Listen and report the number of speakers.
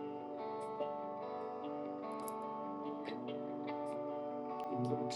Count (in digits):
0